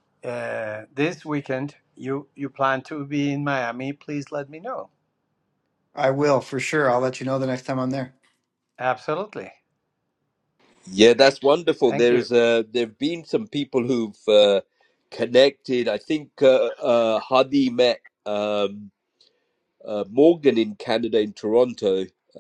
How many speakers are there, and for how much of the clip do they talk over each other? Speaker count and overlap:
3, about 2%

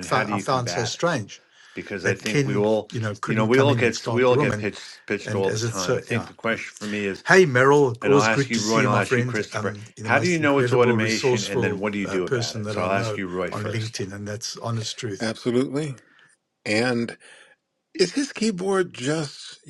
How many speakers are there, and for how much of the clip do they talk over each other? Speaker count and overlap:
3, about 52%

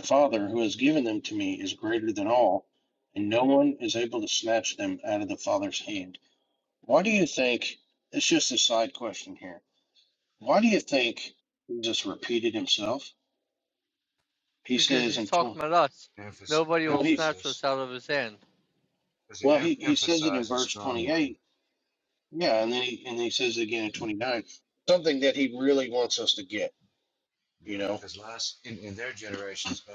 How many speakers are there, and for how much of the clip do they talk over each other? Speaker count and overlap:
3, about 13%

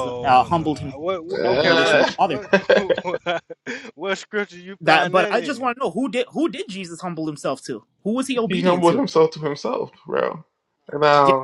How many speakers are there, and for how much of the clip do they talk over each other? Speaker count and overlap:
3, about 32%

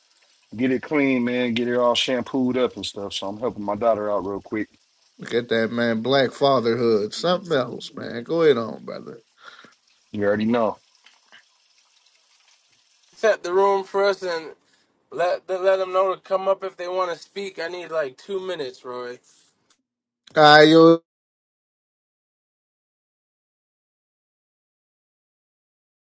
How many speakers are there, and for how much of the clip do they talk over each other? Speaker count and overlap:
3, no overlap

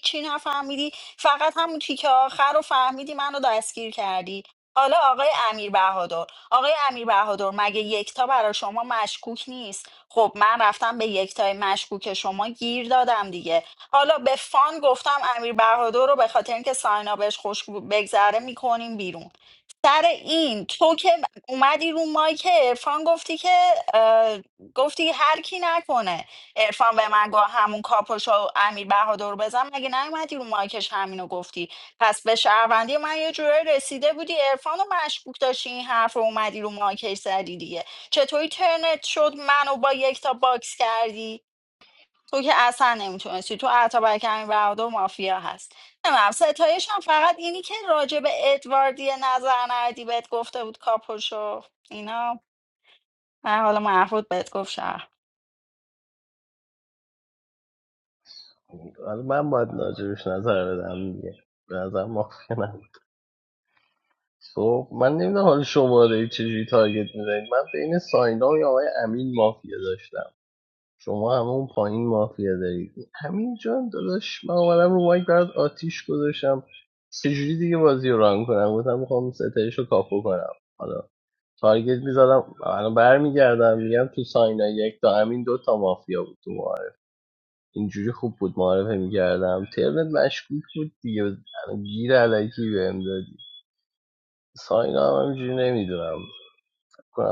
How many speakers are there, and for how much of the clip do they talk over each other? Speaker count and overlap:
2, no overlap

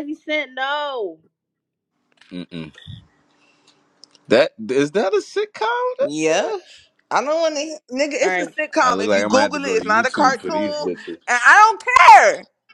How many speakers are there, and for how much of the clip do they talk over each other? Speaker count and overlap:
3, about 21%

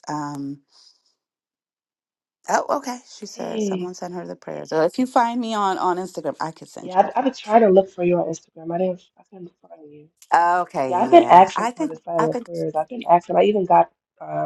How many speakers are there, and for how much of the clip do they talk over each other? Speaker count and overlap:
2, about 18%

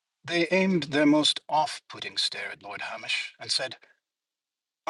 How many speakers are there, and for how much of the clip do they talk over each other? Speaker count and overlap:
1, no overlap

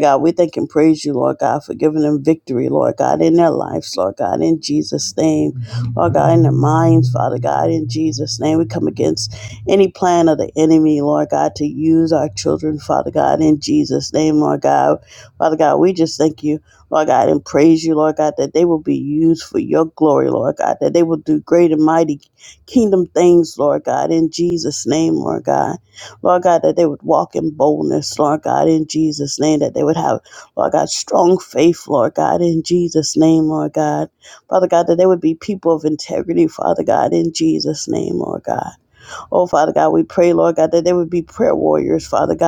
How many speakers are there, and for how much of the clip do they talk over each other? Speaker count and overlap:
1, no overlap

